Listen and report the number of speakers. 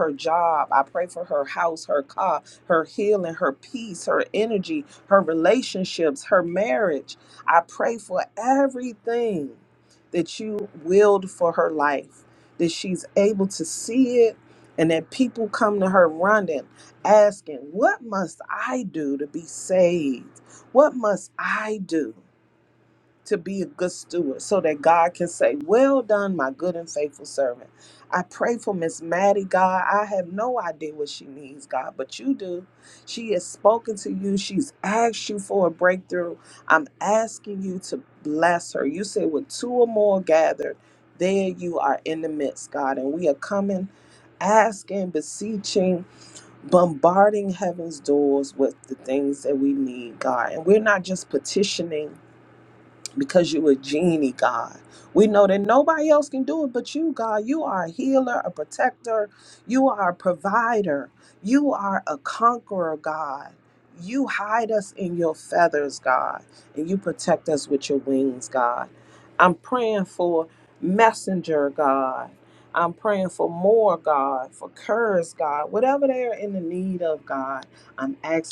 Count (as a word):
one